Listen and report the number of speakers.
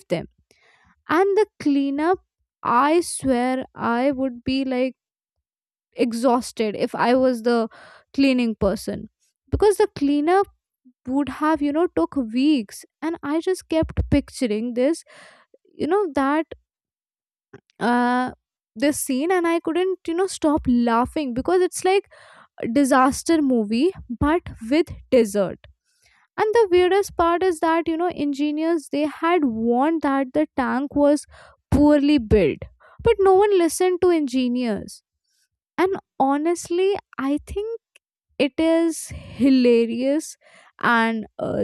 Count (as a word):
one